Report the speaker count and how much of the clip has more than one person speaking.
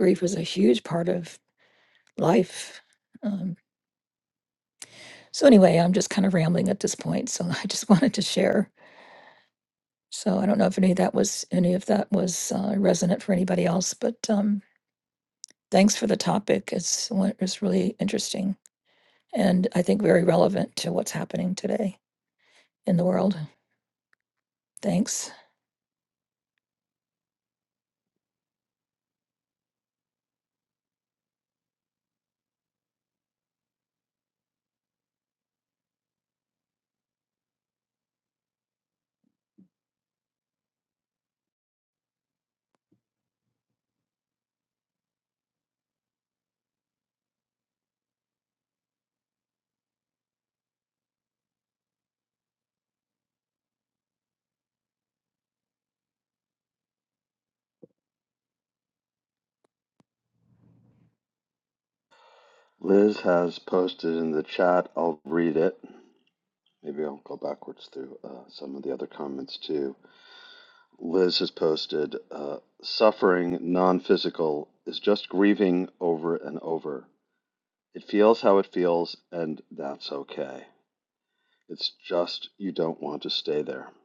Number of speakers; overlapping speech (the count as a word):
two, no overlap